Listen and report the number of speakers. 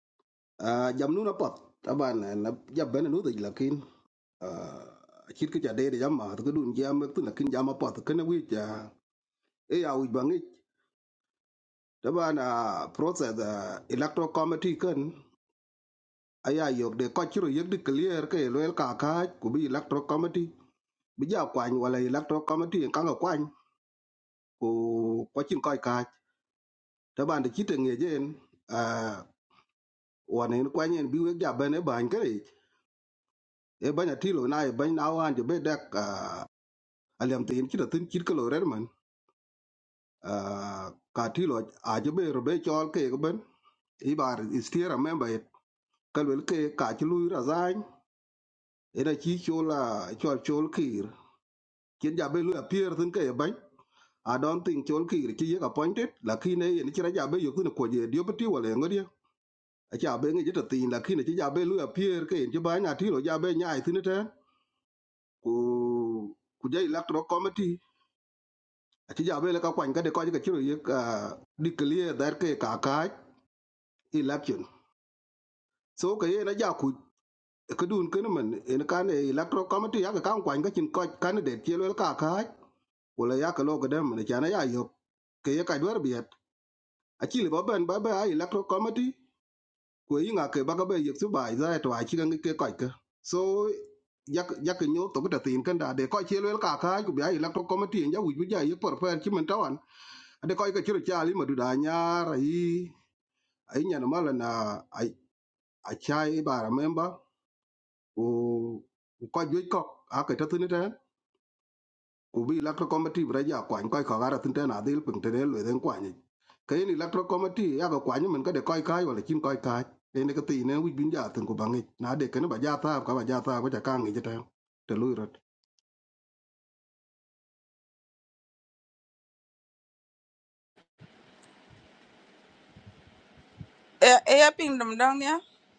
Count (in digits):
2